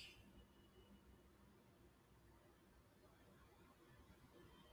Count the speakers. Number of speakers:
zero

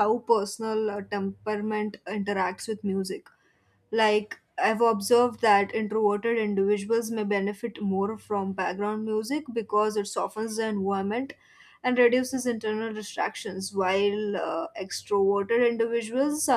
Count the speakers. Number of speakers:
one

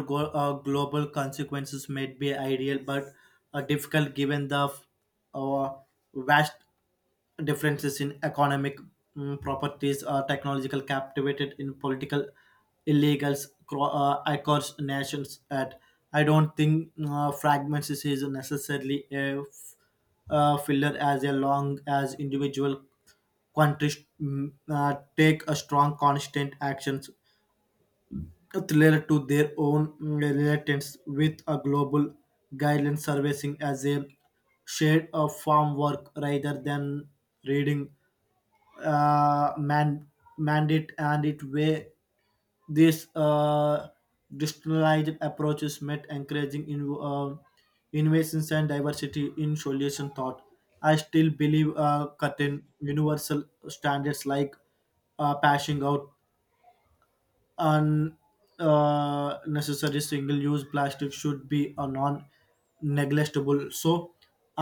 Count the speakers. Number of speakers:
one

